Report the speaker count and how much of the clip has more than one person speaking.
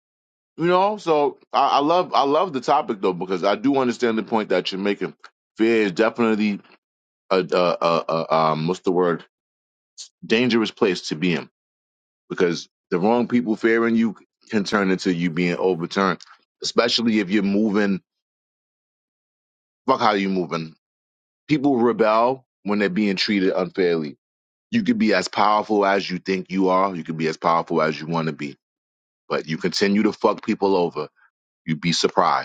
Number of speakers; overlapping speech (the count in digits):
1, no overlap